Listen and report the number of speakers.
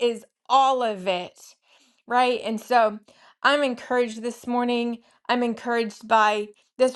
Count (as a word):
one